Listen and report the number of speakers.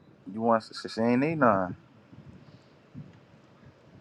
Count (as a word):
one